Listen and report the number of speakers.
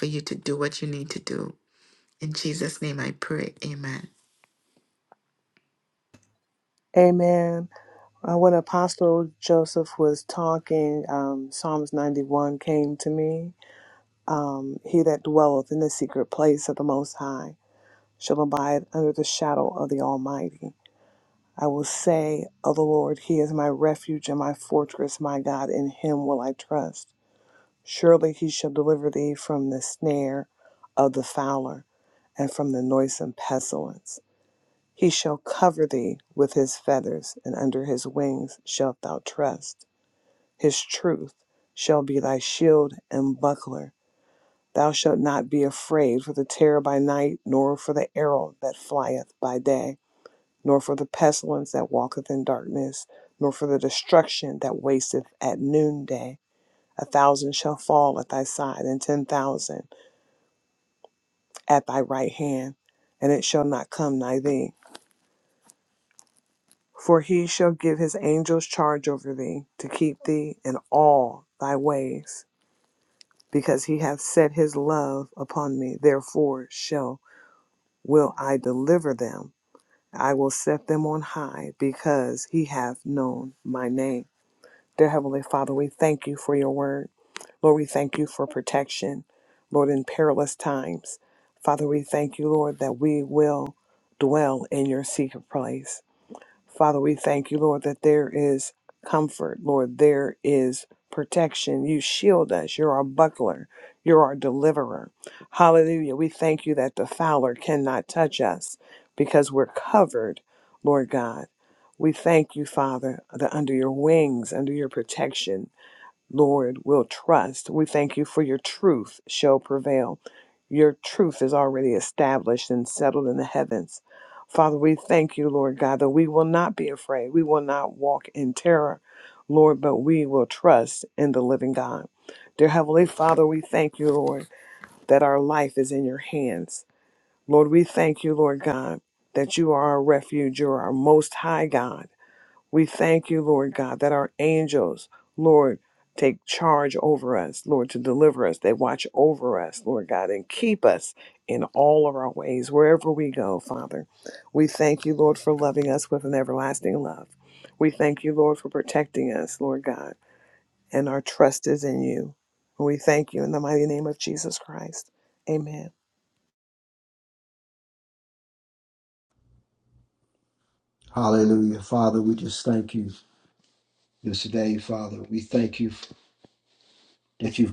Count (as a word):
three